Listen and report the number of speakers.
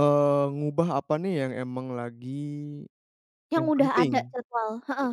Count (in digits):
2